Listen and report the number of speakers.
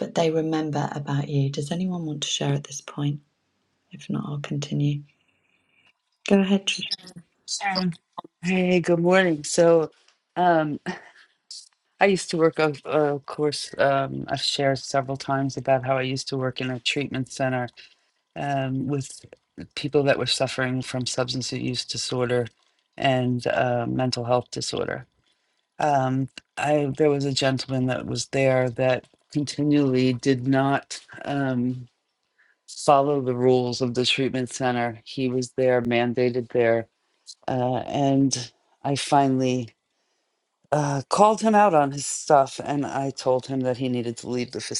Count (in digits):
2